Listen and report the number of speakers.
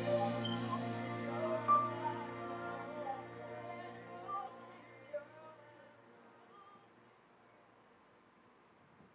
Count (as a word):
zero